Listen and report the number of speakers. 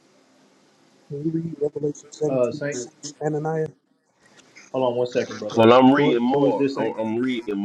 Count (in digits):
3